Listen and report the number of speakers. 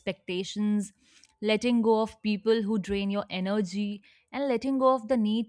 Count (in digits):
1